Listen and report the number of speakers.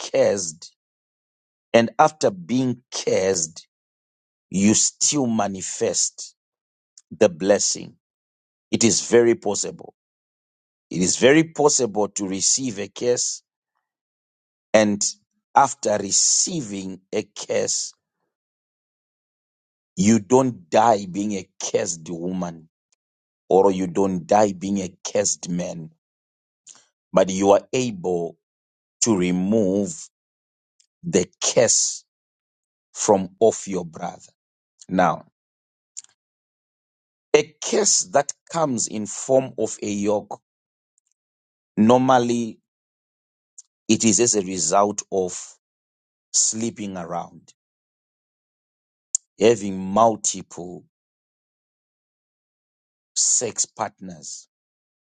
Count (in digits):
1